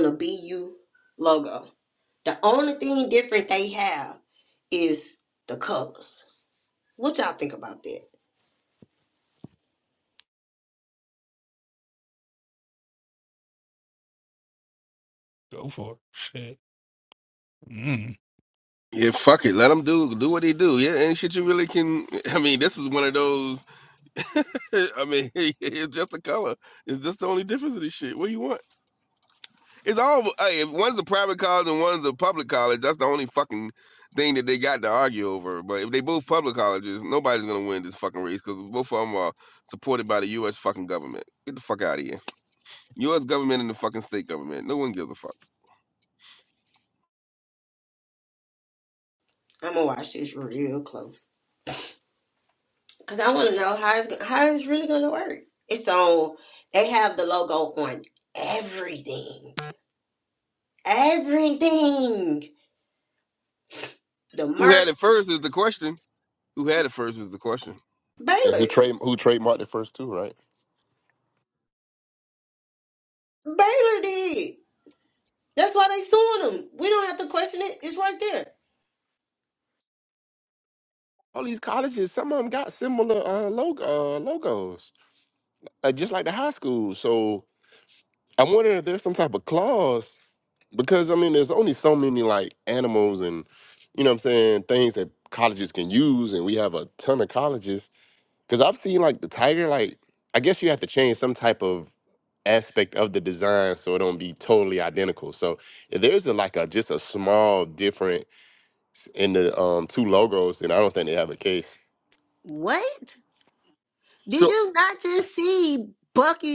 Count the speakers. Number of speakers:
4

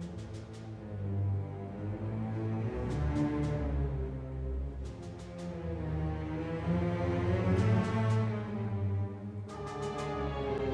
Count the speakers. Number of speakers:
0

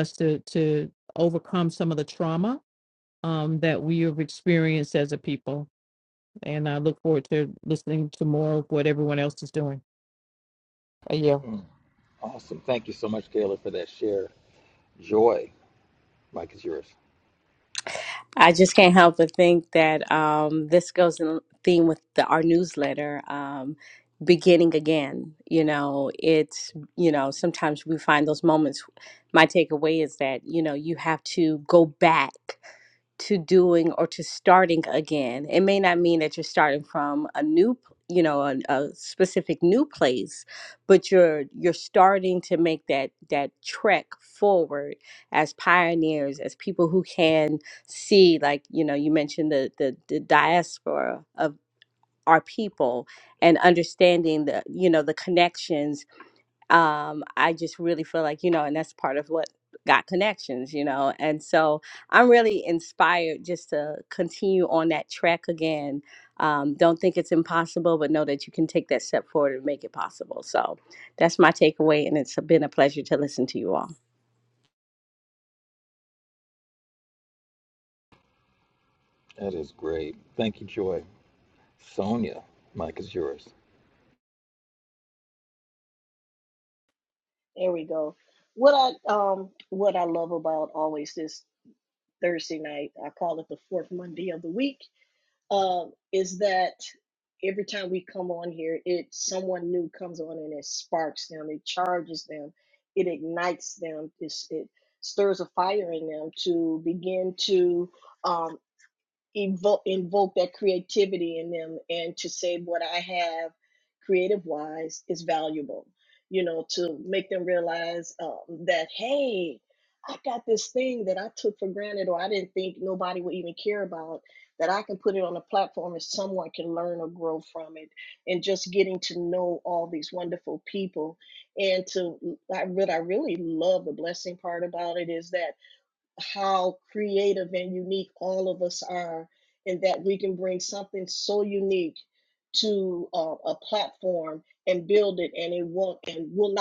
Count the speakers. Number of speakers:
4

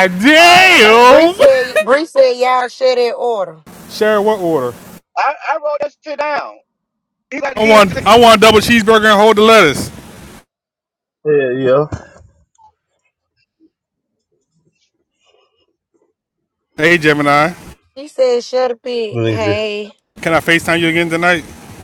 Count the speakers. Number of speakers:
4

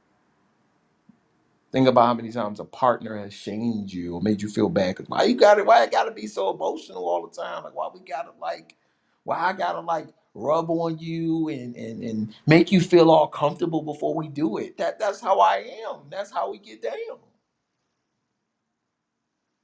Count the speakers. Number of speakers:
1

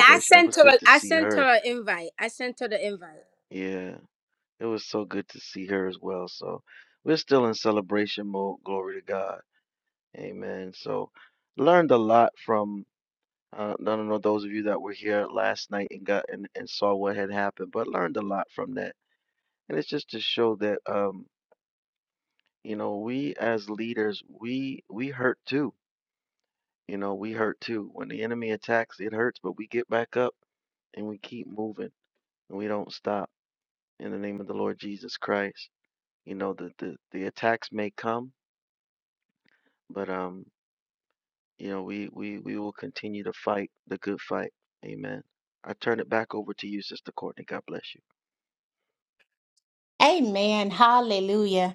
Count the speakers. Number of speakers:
3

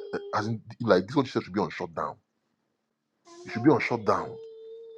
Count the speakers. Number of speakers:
1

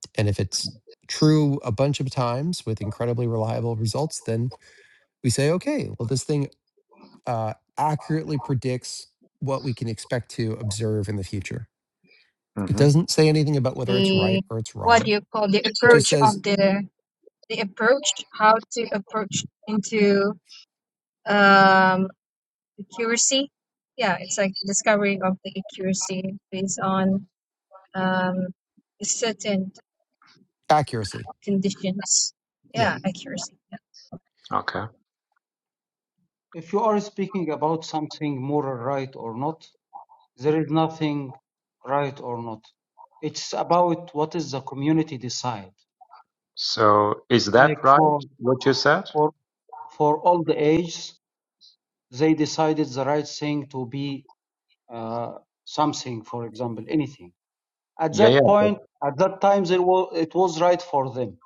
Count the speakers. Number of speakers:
4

